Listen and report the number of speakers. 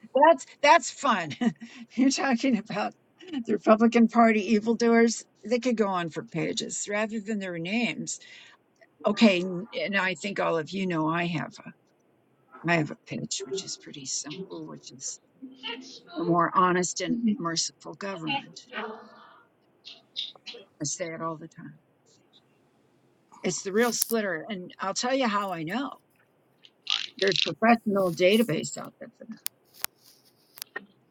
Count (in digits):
1